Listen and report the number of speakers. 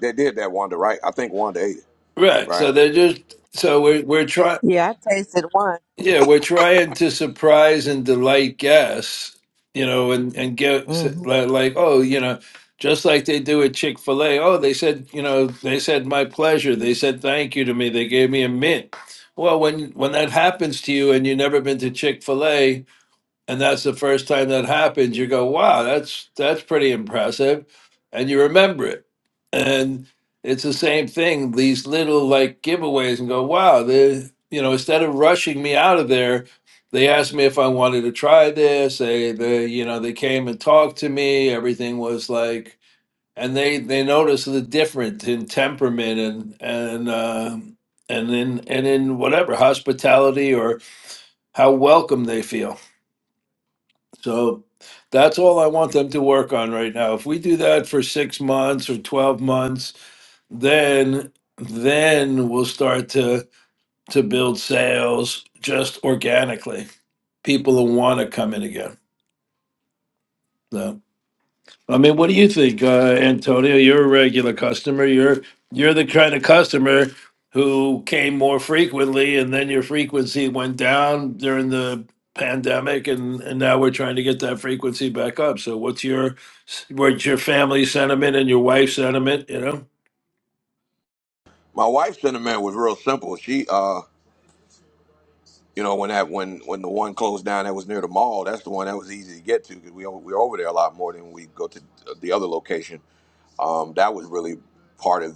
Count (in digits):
3